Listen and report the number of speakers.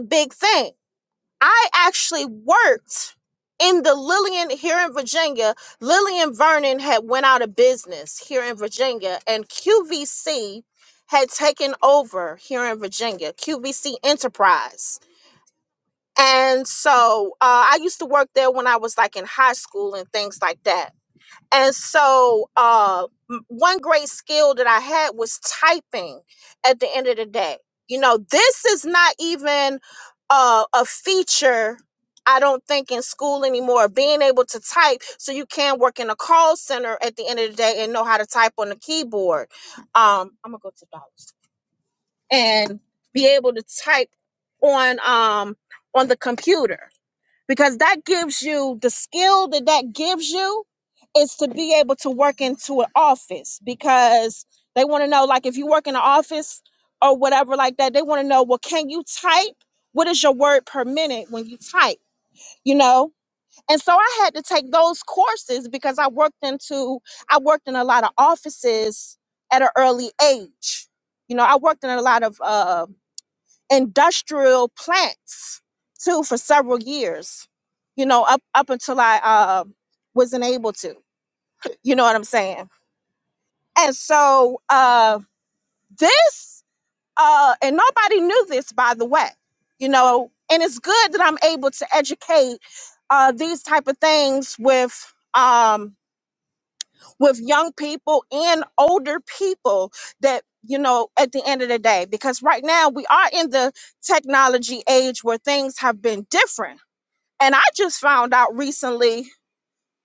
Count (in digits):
1